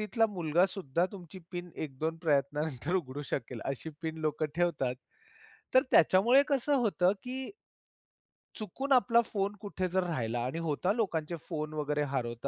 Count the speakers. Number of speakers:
1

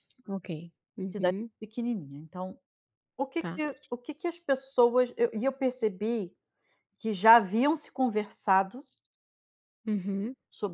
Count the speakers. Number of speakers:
2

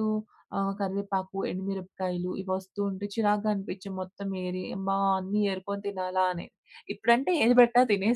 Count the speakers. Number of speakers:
1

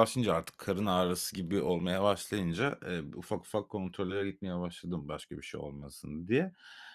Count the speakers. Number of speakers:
1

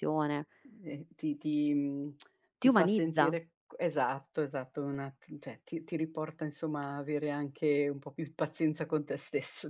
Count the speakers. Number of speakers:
2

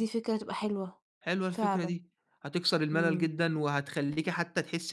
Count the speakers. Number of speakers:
2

